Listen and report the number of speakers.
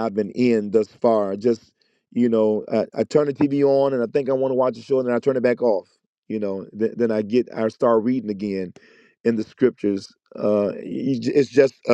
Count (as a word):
one